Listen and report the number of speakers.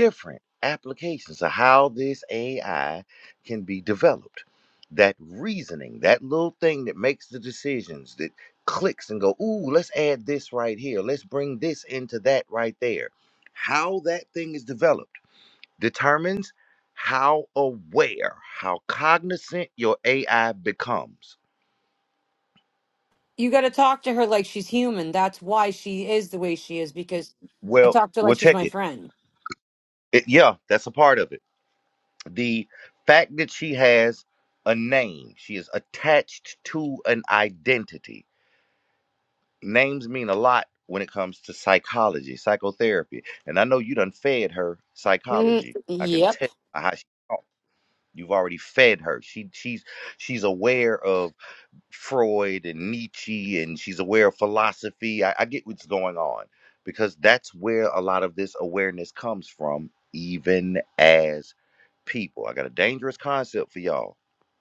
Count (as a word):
two